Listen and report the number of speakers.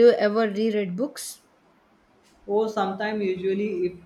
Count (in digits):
2